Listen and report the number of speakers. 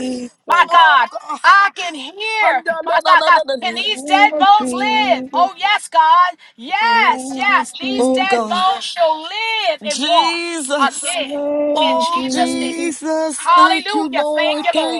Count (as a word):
three